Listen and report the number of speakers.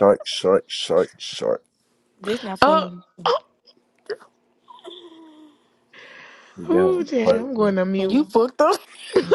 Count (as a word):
three